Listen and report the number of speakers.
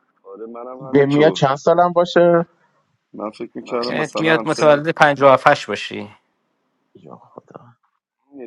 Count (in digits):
3